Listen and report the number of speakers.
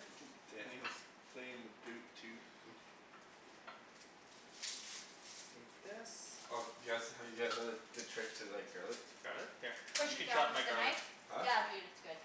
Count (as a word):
four